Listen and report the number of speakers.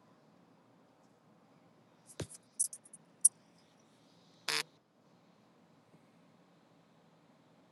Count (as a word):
zero